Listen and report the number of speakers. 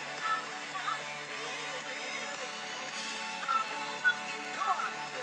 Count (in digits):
0